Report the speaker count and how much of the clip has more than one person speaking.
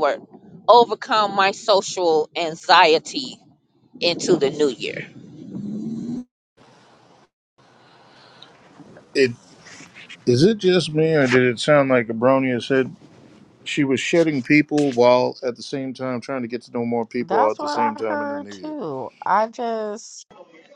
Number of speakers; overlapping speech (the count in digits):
3, about 7%